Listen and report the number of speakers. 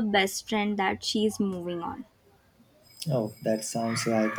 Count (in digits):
2